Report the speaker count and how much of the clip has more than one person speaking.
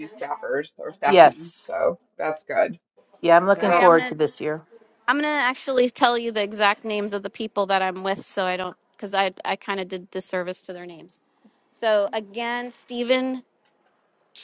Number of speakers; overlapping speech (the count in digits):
3, about 5%